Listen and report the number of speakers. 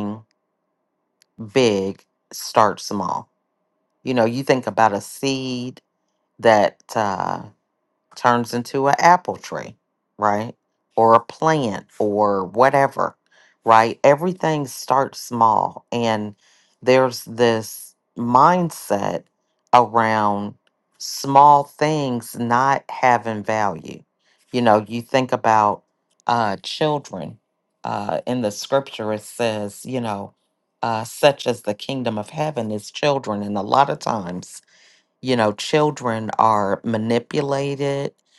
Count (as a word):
one